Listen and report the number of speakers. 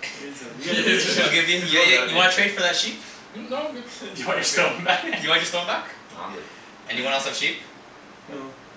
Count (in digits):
3